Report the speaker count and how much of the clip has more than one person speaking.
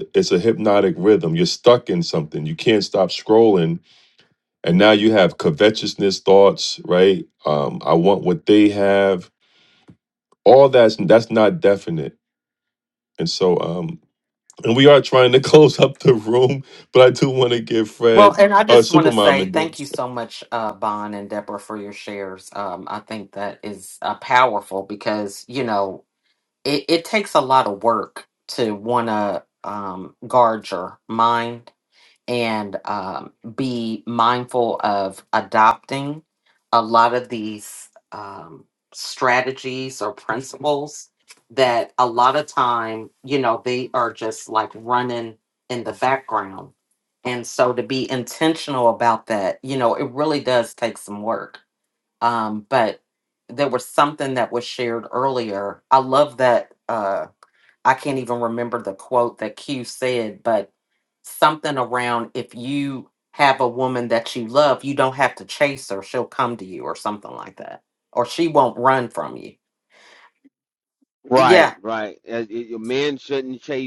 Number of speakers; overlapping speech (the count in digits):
3, about 2%